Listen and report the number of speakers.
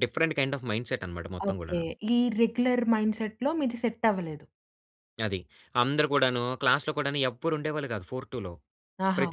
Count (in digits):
2